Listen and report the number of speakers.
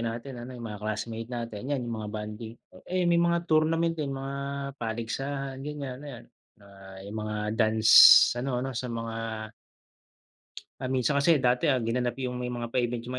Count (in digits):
1